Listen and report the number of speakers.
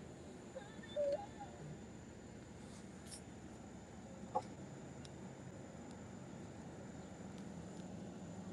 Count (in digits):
0